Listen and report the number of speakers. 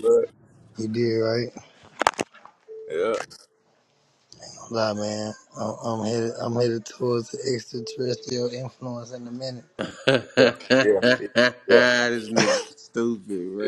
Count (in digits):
3